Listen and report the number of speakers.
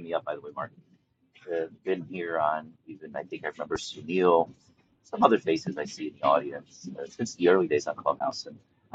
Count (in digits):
1